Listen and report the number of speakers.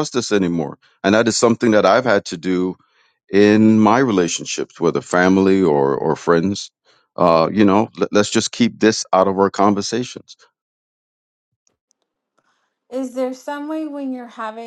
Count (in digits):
2